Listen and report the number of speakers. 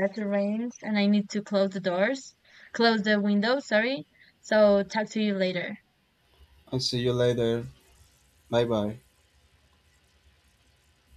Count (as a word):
two